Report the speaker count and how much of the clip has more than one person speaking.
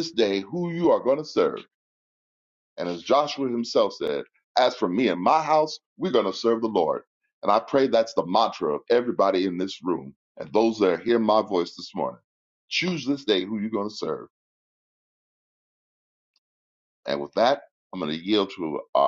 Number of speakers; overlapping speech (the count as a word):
one, no overlap